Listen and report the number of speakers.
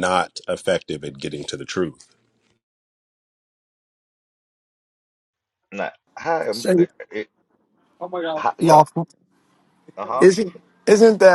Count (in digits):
3